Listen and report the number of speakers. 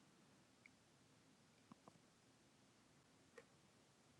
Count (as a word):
zero